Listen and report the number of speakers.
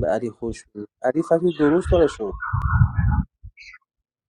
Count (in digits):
1